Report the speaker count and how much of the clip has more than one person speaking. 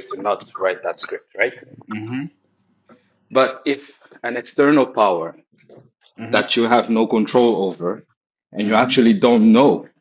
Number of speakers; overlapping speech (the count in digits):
2, about 6%